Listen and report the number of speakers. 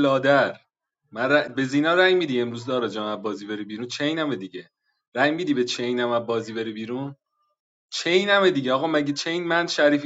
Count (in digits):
1